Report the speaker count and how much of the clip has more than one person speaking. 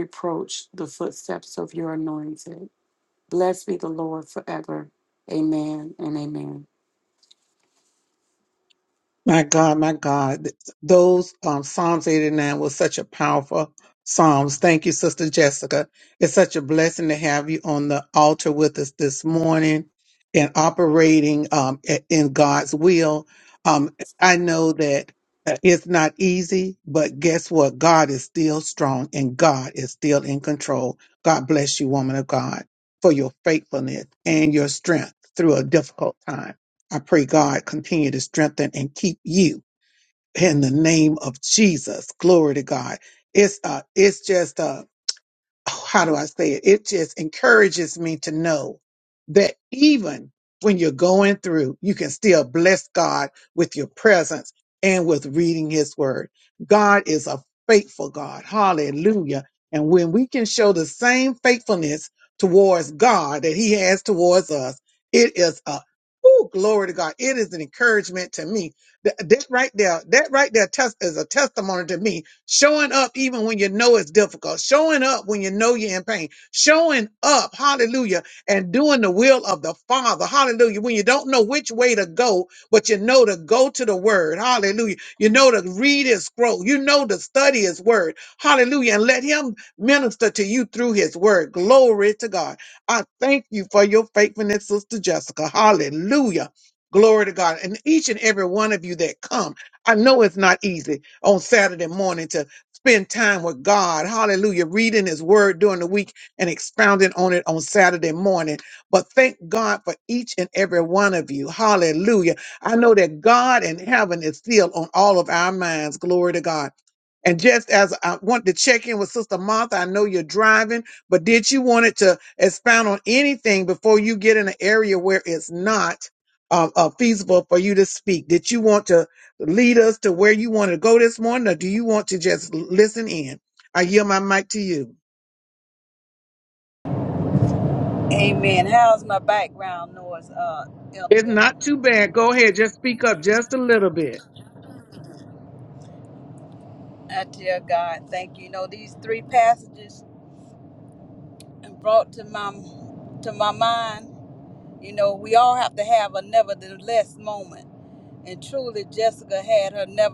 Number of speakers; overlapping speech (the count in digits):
3, under 1%